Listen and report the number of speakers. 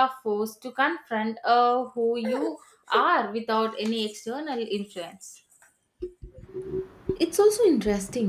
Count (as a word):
two